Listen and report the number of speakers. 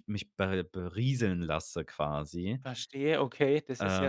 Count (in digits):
2